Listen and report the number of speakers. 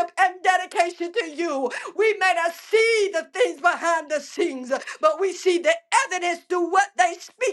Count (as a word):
one